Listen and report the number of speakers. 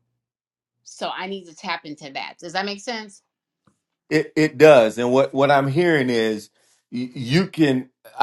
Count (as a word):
two